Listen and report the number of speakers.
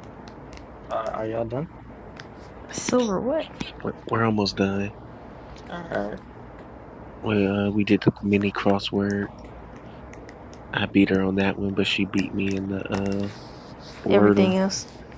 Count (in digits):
3